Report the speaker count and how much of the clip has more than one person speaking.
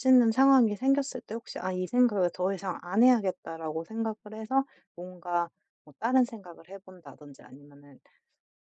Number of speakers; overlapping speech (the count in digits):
1, no overlap